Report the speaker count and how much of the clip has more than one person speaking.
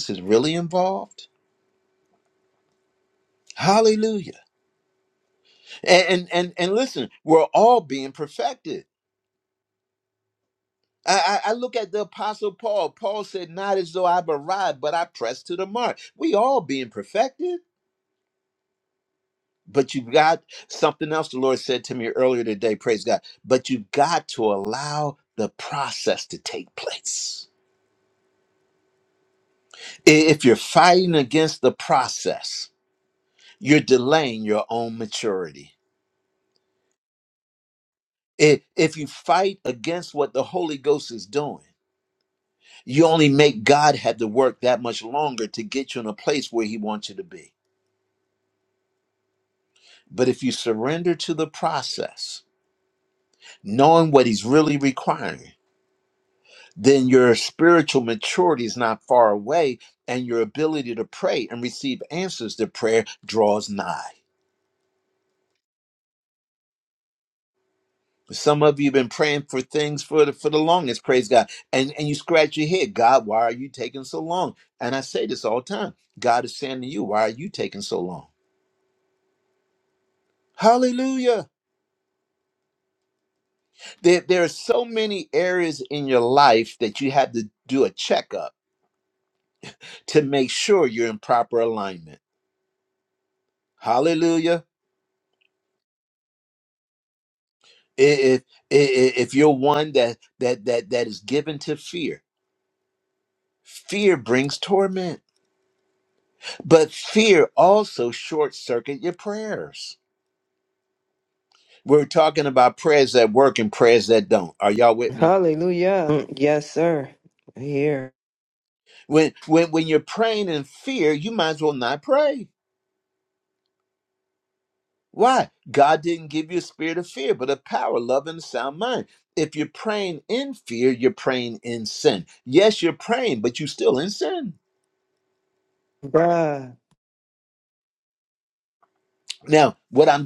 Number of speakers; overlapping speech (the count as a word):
two, under 1%